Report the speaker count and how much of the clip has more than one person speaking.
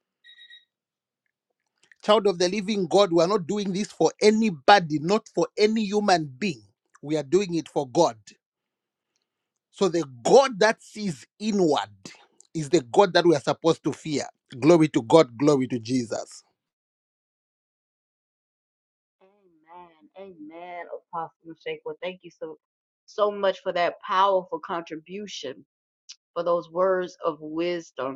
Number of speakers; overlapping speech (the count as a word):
two, no overlap